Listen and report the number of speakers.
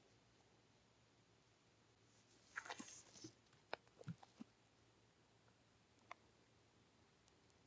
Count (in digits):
0